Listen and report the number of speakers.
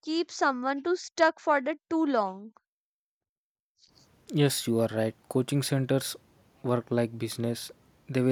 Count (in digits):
2